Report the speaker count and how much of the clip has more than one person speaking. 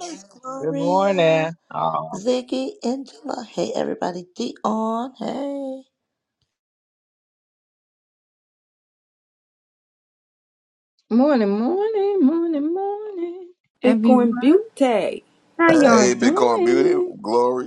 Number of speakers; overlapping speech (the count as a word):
five, about 17%